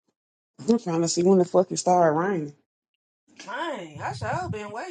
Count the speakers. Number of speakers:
2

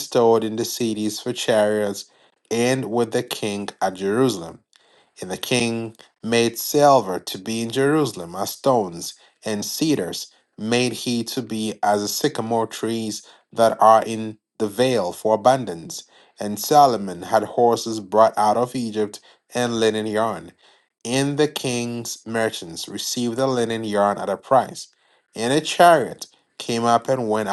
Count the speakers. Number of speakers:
1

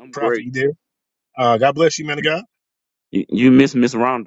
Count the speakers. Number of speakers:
2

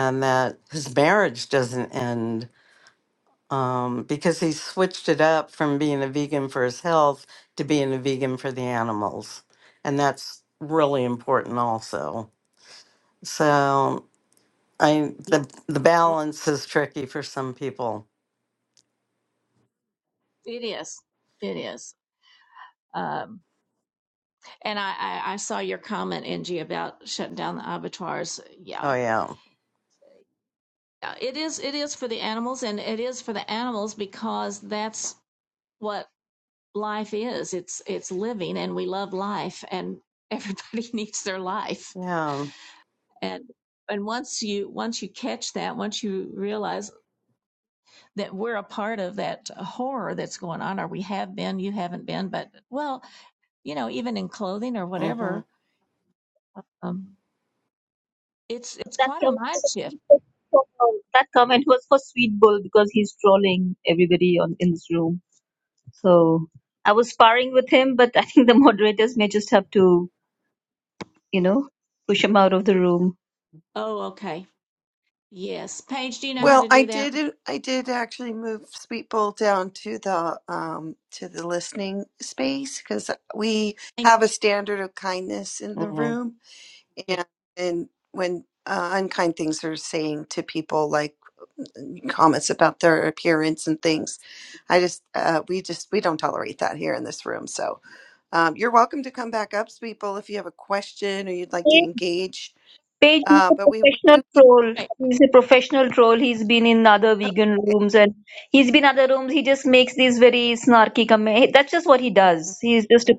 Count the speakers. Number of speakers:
4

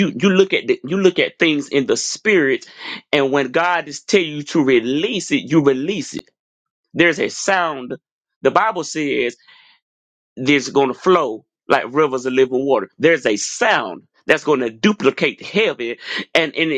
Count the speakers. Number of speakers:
1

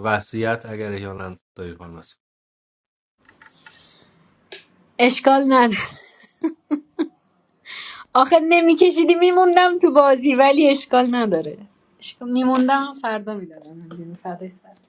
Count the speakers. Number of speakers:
2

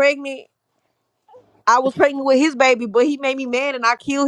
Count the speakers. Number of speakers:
1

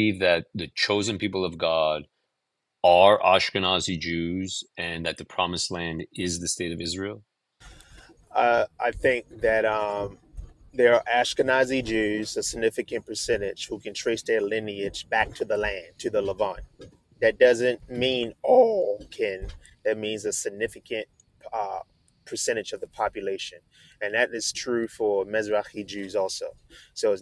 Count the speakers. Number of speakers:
2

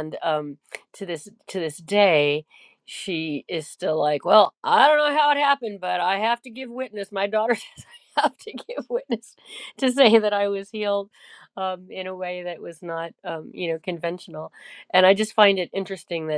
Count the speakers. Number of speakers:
1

